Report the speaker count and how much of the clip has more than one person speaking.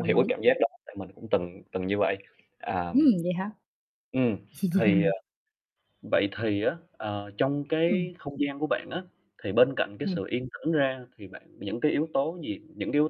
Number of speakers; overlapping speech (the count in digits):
2, about 6%